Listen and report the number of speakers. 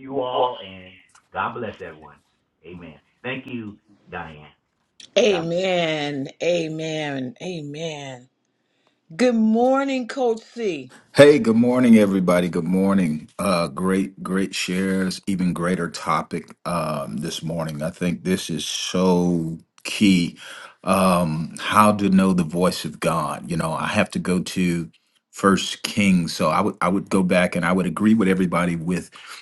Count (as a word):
three